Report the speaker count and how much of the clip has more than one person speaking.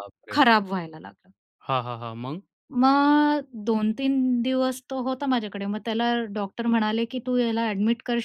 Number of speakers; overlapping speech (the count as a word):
two, about 1%